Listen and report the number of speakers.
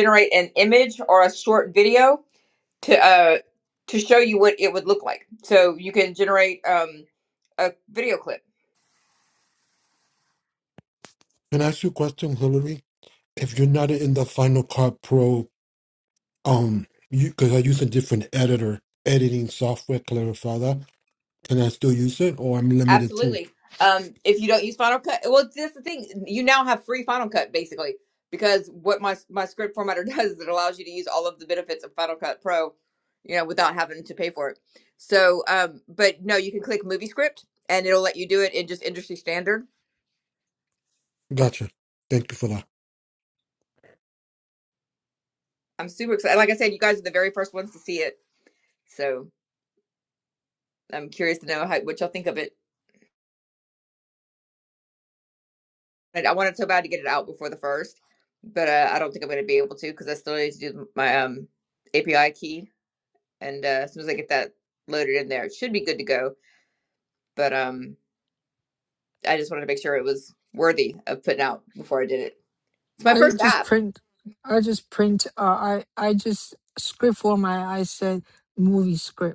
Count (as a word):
three